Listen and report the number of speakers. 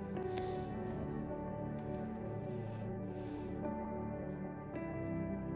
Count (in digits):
0